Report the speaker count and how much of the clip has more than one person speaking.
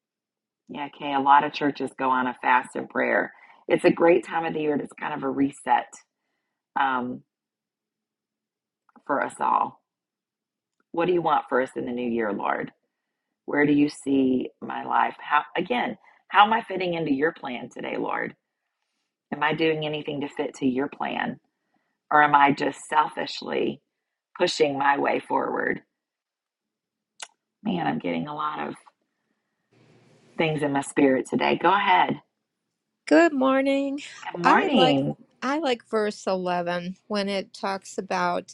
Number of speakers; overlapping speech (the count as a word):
two, about 1%